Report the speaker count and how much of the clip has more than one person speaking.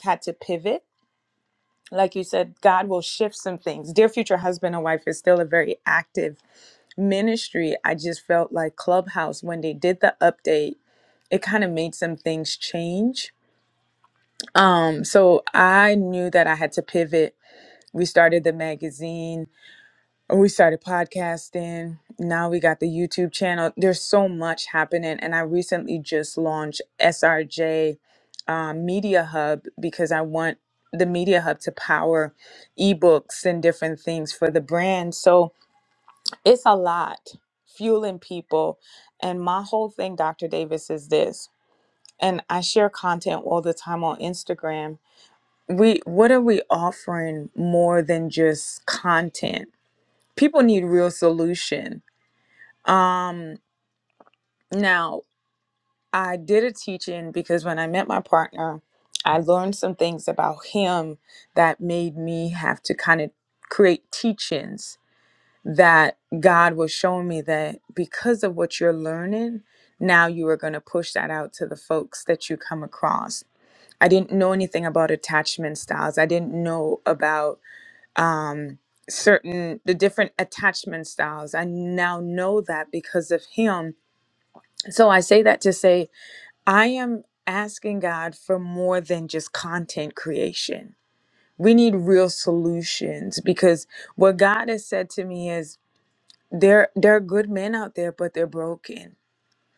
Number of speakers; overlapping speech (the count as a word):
one, no overlap